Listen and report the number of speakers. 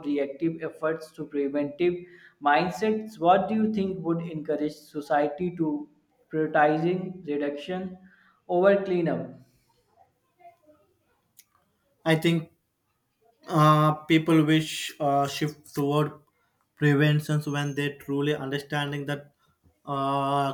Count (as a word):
two